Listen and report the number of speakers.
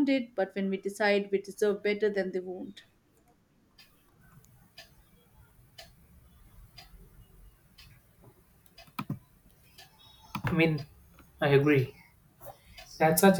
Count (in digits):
2